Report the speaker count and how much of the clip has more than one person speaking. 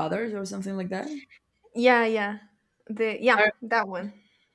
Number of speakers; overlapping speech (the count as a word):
two, no overlap